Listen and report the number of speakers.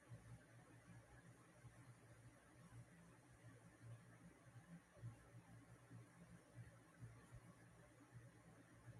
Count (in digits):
0